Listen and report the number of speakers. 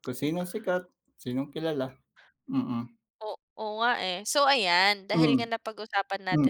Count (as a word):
two